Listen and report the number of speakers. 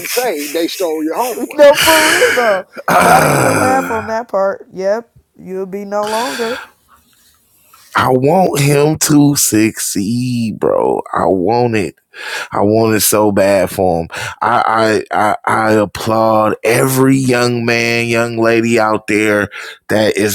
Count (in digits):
3